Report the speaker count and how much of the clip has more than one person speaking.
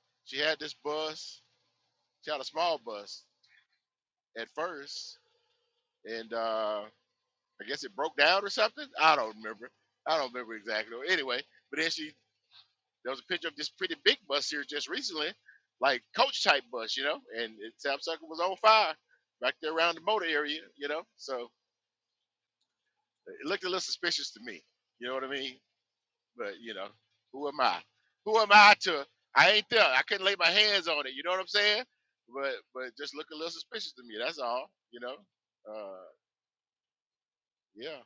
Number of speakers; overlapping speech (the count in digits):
1, no overlap